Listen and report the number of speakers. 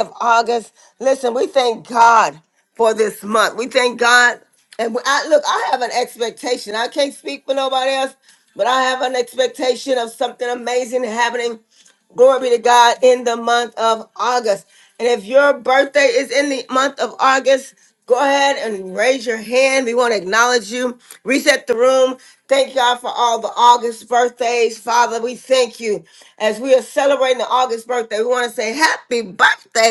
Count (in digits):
1